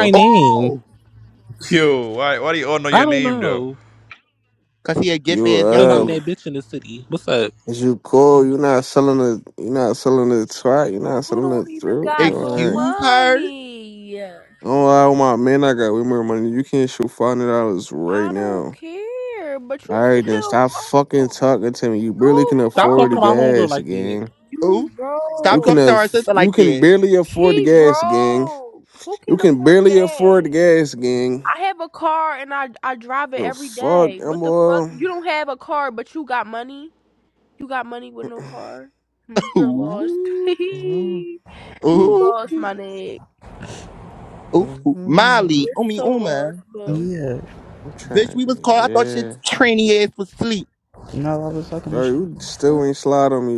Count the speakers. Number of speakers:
6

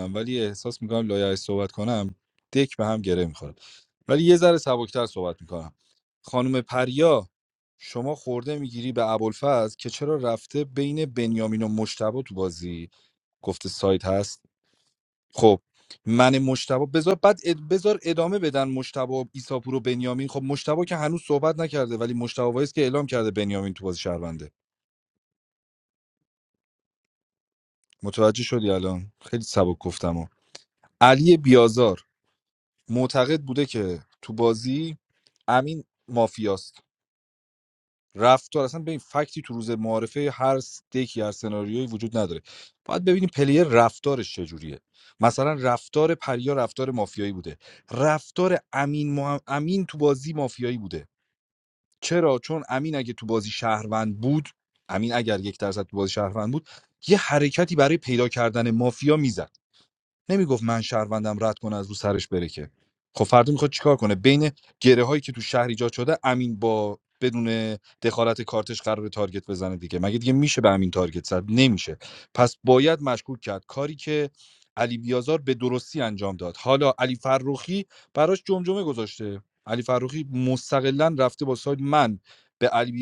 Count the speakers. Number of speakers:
1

